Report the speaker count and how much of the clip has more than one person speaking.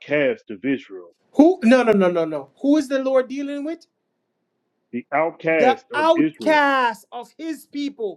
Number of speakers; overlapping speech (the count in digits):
2, about 12%